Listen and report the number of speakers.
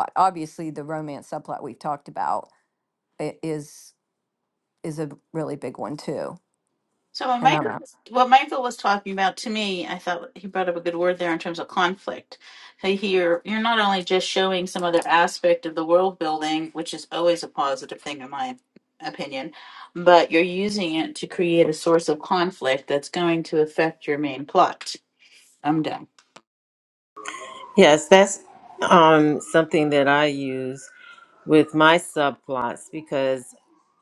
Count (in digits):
3